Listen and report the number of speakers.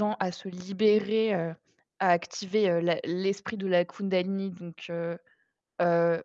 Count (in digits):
1